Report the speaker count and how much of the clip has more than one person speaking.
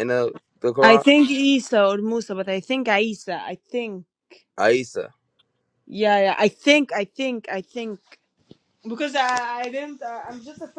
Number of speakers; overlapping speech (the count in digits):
2, about 2%